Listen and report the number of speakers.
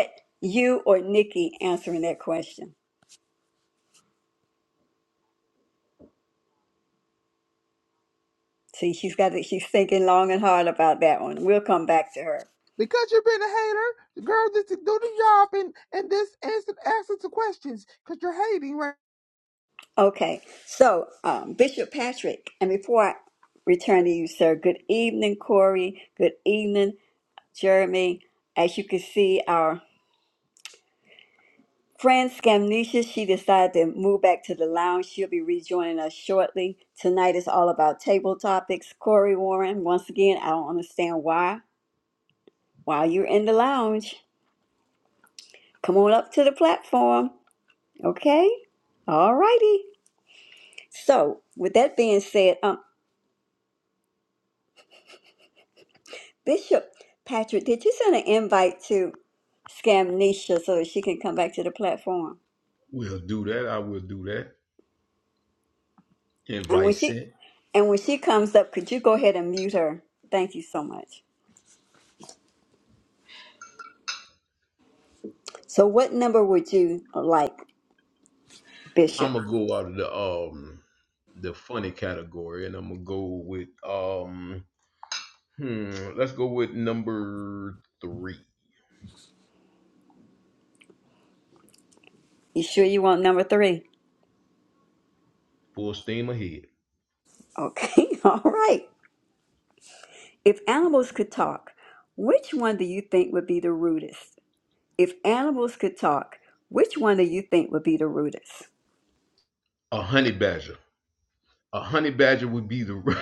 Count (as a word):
three